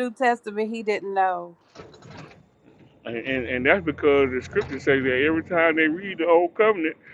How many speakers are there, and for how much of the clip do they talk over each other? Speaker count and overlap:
2, no overlap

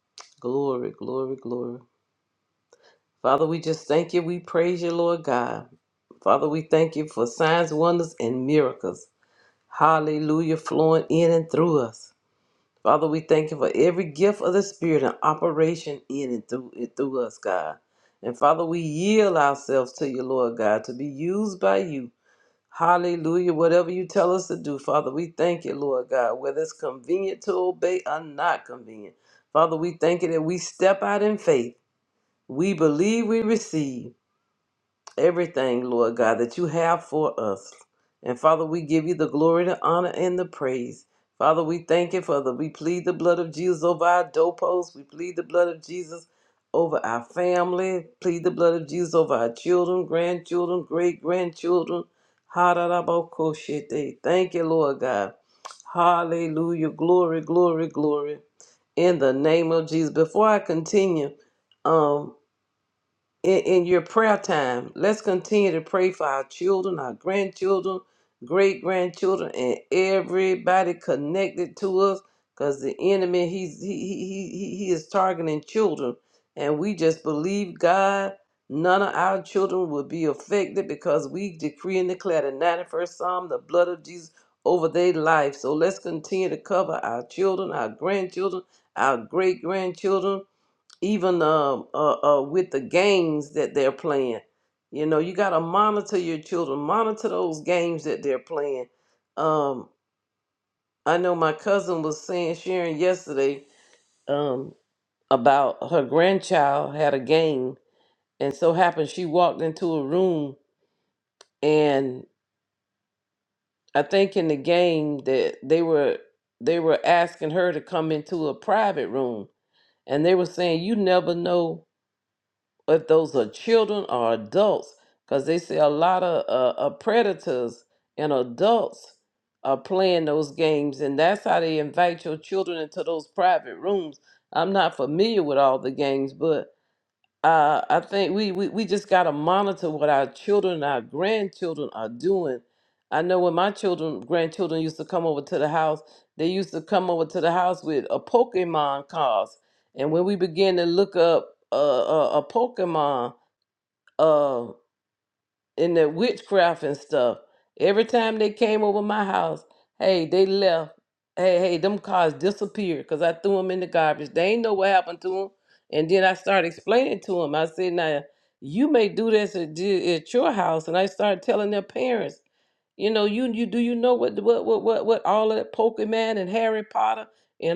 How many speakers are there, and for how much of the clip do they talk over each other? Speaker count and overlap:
1, no overlap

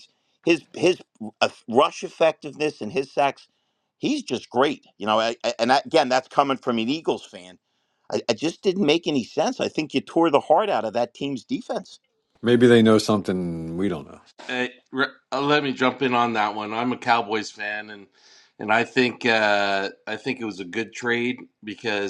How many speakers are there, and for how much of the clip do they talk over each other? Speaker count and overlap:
3, no overlap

